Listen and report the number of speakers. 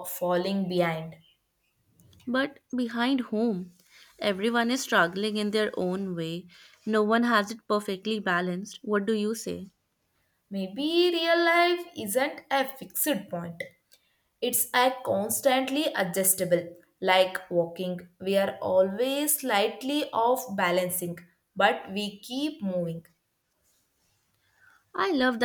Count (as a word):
two